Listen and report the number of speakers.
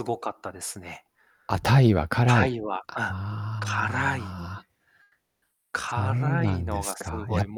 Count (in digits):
2